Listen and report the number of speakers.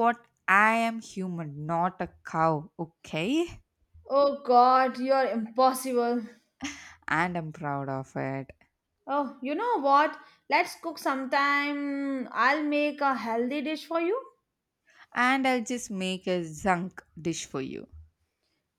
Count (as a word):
two